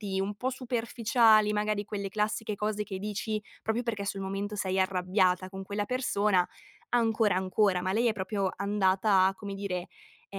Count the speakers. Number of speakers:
one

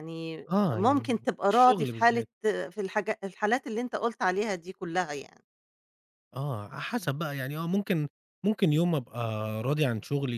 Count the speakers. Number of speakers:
two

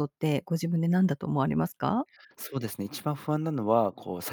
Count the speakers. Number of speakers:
two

